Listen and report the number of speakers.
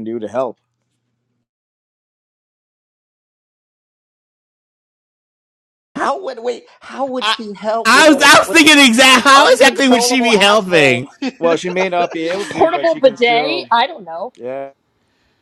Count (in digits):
4